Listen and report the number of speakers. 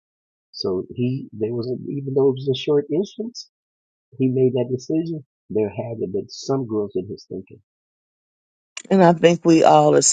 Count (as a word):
two